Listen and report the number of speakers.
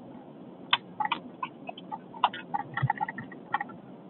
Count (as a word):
zero